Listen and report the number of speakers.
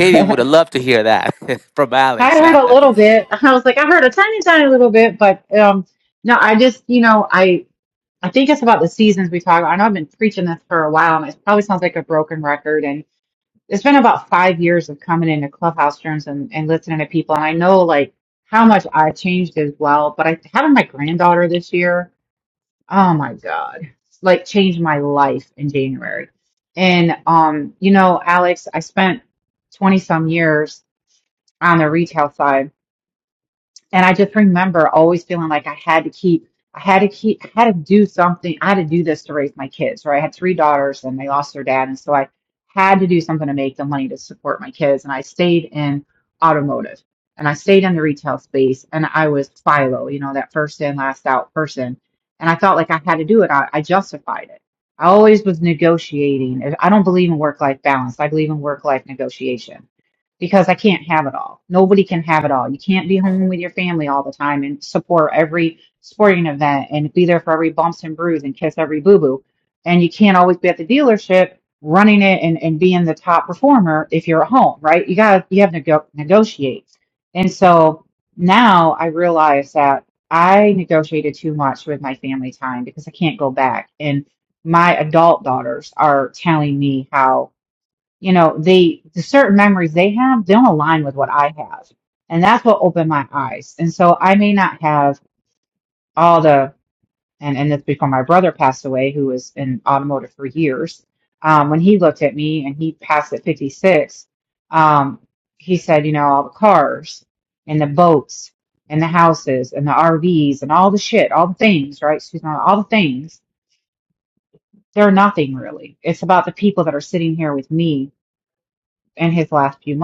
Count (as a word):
two